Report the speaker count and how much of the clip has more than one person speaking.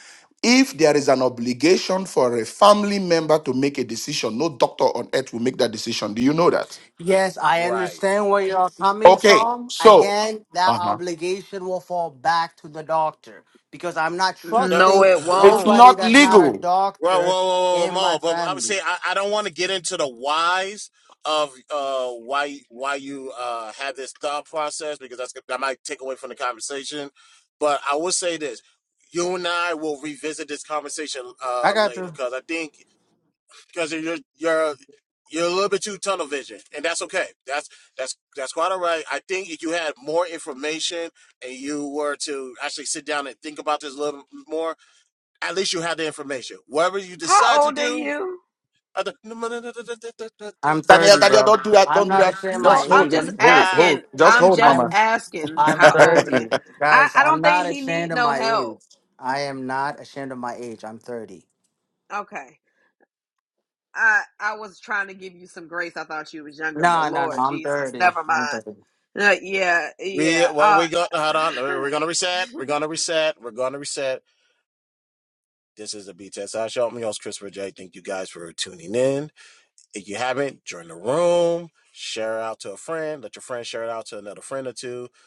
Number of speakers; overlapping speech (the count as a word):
four, about 19%